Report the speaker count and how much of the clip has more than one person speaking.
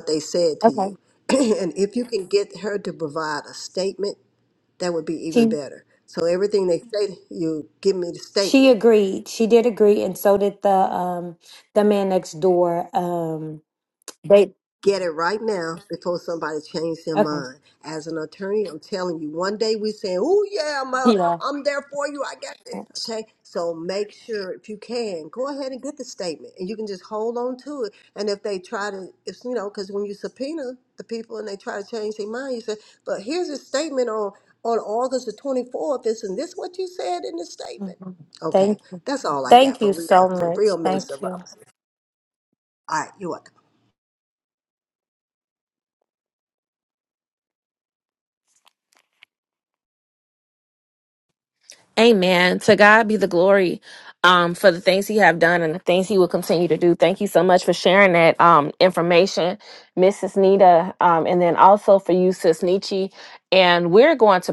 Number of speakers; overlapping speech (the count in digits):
3, about 6%